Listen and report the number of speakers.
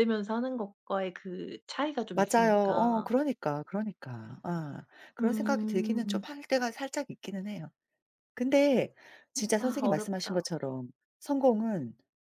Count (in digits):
2